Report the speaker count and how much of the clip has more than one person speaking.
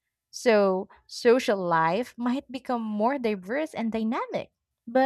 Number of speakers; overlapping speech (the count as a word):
one, no overlap